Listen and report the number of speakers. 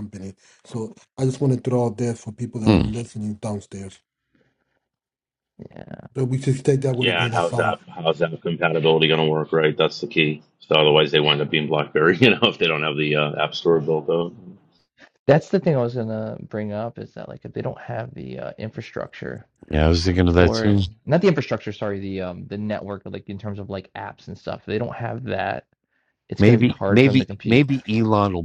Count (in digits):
4